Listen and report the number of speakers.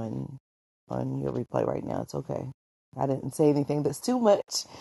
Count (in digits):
1